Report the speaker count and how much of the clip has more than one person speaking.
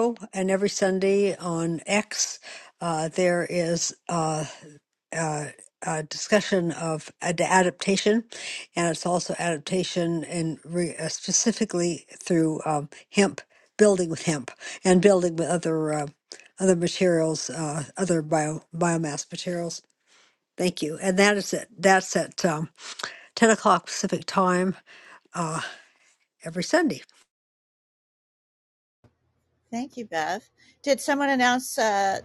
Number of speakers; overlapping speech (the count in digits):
2, no overlap